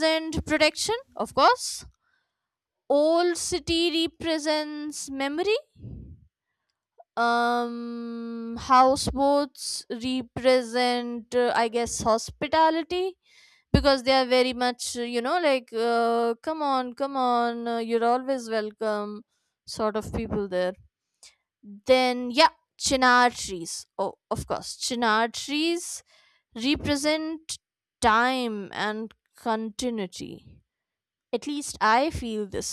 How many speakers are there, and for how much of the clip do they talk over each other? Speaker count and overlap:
1, no overlap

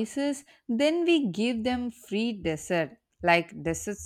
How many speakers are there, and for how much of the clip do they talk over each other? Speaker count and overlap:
1, no overlap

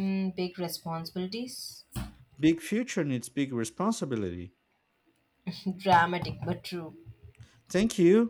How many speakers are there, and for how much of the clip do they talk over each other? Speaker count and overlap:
2, no overlap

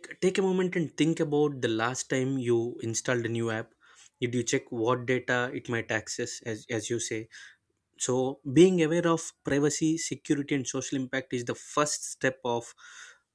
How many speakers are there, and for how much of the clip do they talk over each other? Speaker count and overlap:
1, no overlap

